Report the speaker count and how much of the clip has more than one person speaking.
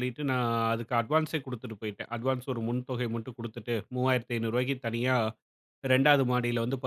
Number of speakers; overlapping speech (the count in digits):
1, no overlap